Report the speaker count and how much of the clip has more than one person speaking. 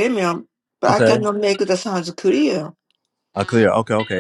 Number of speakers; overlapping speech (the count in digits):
2, about 10%